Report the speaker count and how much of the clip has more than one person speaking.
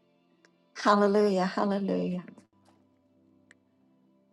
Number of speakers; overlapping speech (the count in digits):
1, no overlap